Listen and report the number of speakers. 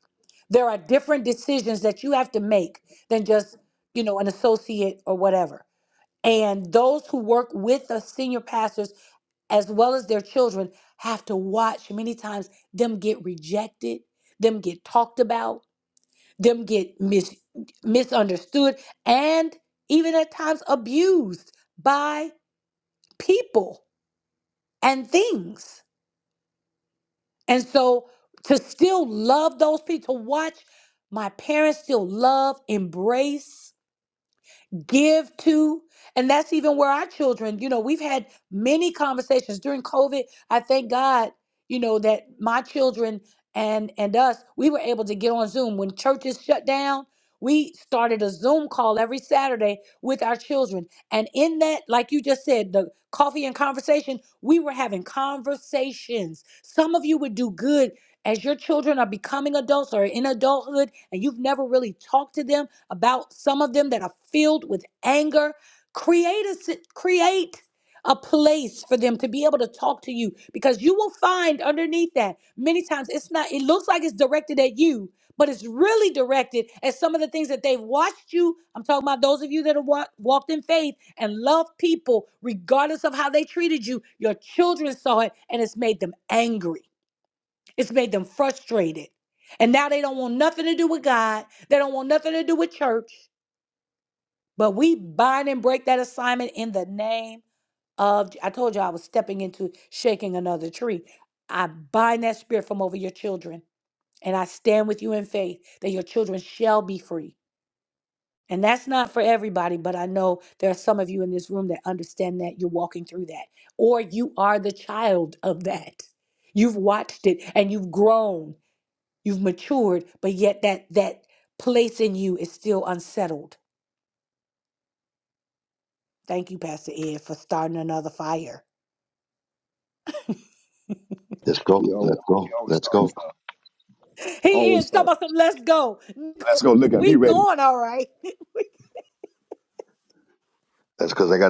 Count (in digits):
3